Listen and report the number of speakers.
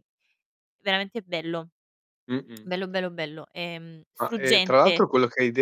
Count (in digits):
2